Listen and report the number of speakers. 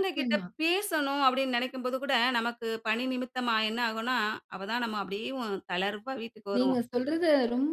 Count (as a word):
two